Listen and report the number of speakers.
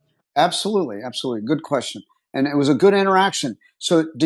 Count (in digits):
1